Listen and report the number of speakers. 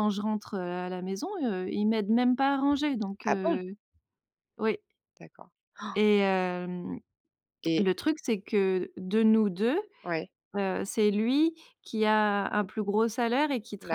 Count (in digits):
2